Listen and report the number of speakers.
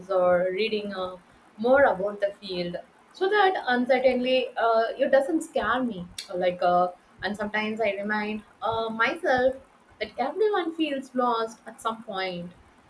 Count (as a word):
one